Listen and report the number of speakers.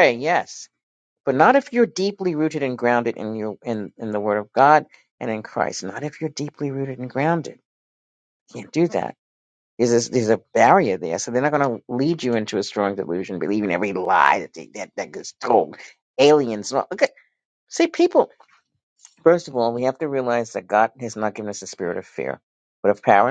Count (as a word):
one